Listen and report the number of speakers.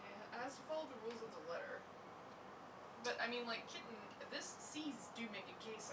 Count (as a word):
one